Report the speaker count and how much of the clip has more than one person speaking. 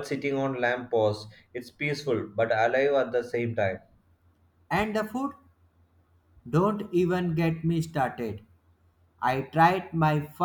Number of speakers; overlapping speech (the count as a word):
two, no overlap